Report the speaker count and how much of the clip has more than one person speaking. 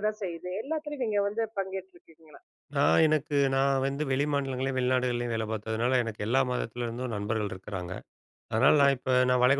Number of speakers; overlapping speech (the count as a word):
two, about 2%